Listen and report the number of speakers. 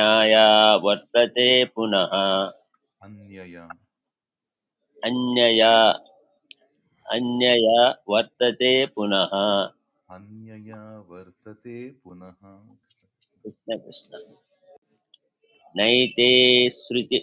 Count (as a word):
two